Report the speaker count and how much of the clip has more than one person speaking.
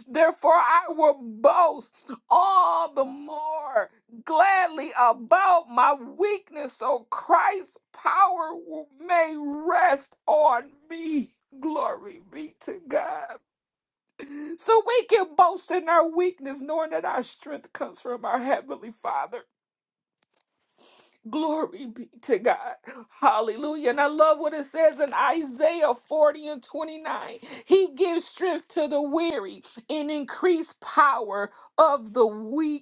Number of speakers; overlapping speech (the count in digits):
1, no overlap